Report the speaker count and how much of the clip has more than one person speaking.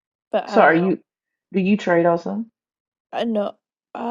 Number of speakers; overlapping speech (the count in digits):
2, about 9%